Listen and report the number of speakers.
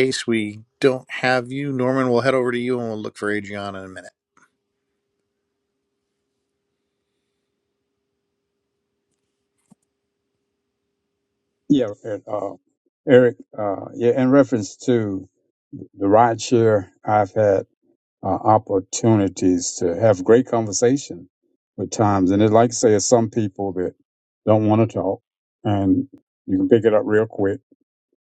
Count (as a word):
two